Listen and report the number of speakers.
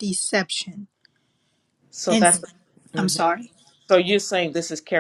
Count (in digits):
2